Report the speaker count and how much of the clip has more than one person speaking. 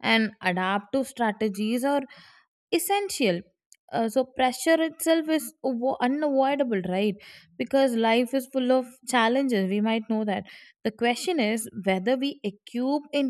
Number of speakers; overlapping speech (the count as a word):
one, no overlap